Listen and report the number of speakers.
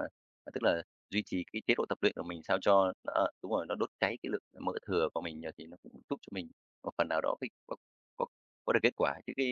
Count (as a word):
one